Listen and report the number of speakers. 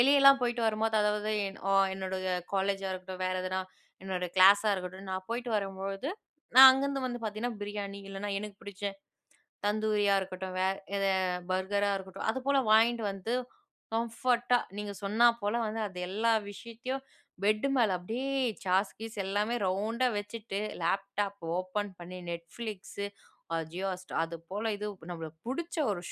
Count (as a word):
one